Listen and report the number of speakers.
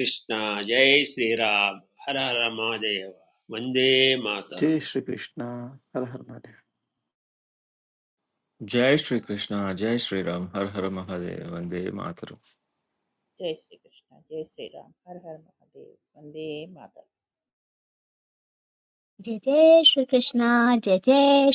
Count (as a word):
five